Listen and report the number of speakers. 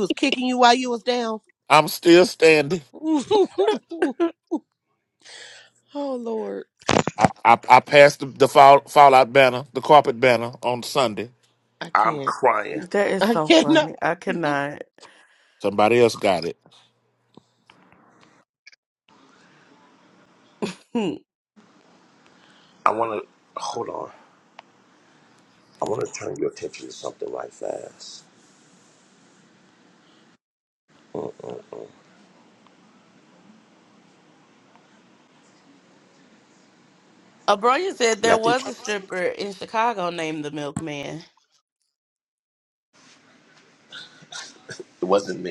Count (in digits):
4